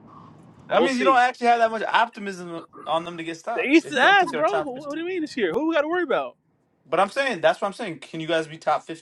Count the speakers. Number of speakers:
two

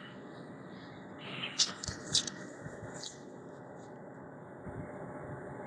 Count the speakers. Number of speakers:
zero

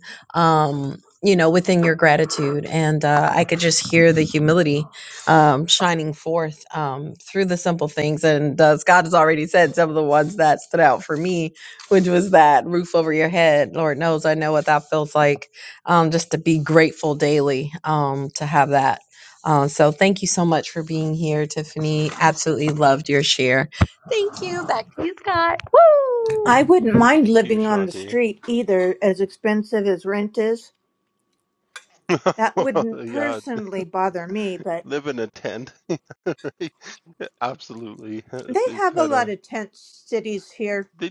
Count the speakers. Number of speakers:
three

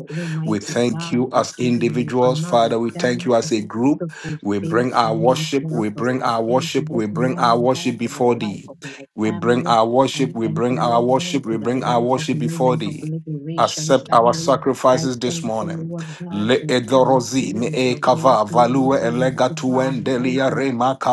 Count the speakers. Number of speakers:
two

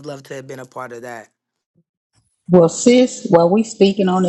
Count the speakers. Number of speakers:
two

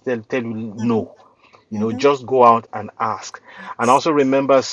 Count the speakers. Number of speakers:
one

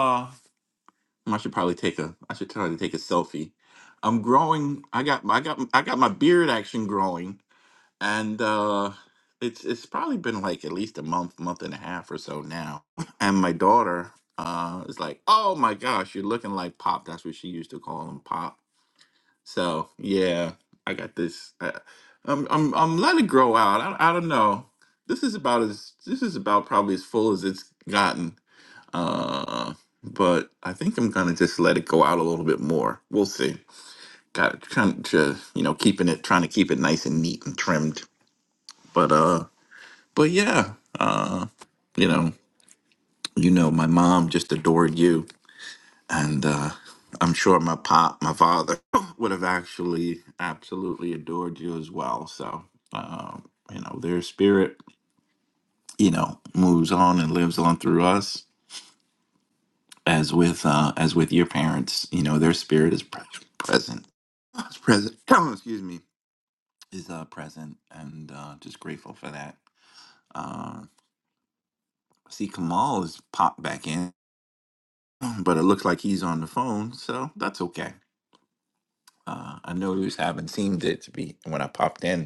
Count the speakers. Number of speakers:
one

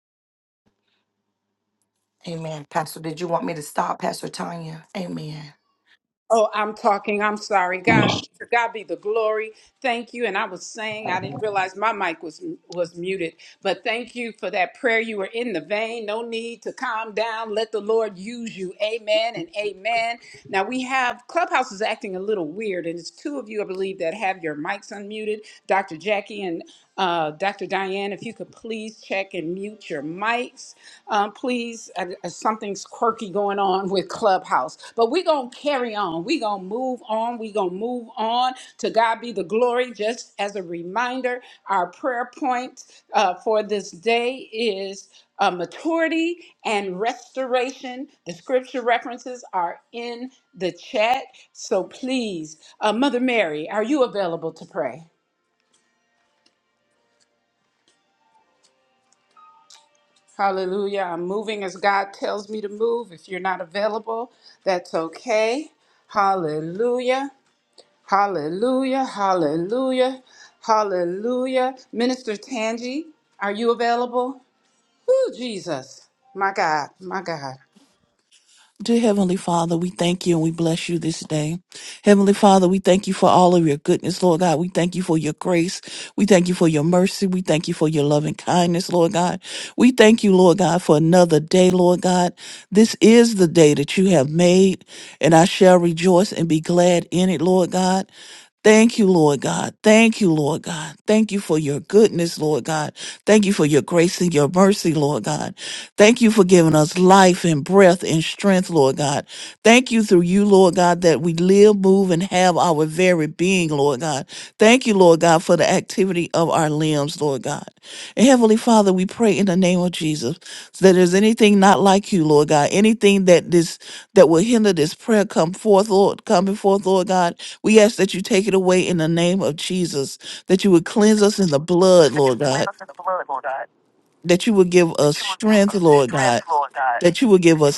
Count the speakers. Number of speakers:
four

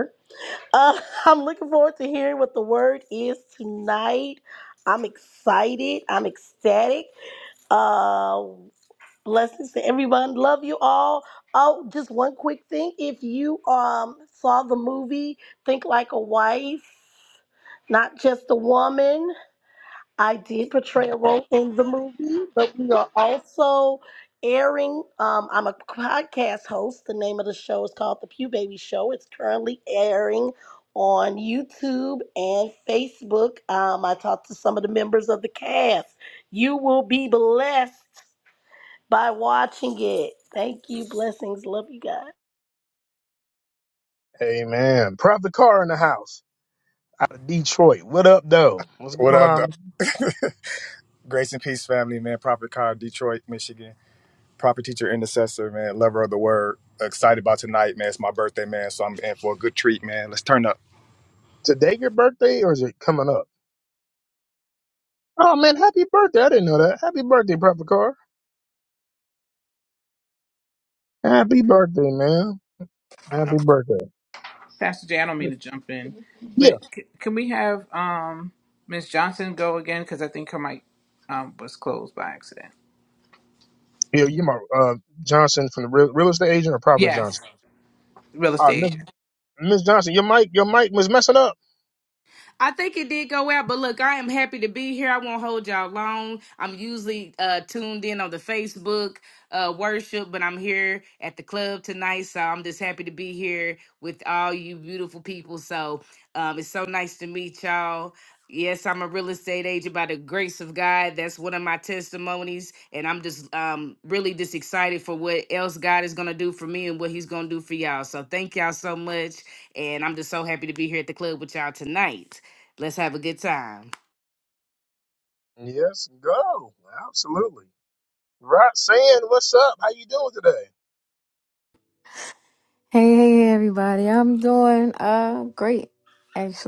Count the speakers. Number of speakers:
six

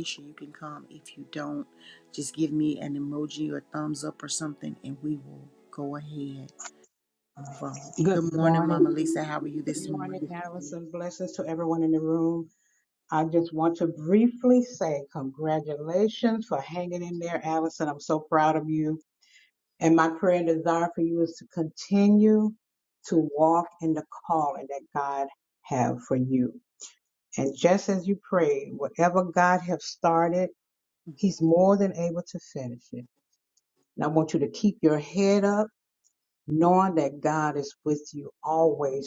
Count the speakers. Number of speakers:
two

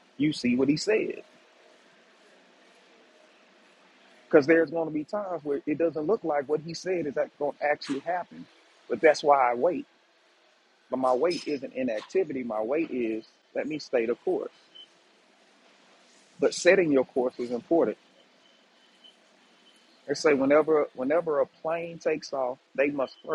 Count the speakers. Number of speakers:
one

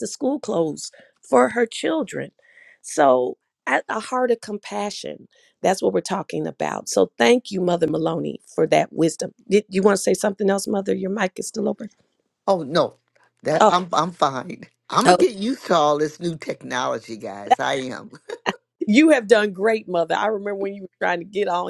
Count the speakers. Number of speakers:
two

